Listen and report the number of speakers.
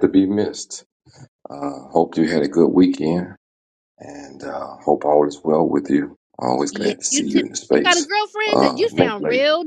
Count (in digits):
2